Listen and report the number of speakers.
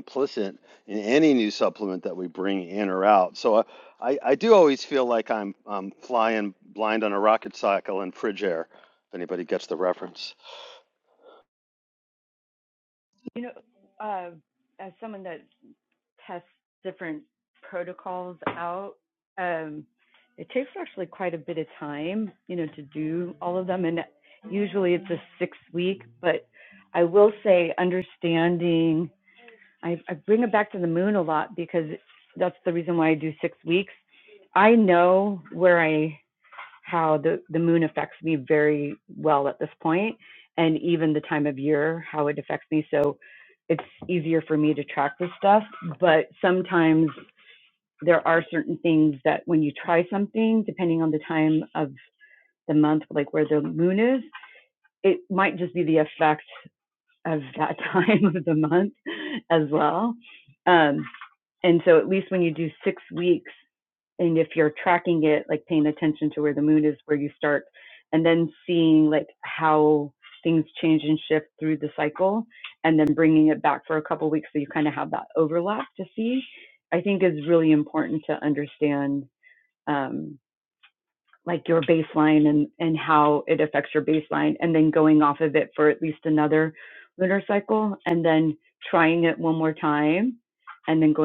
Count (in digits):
2